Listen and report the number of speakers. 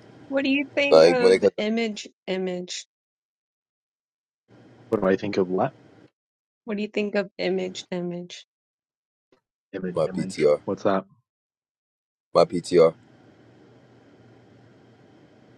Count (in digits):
3